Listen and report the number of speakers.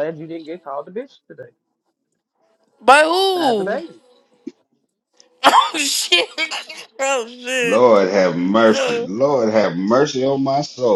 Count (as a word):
three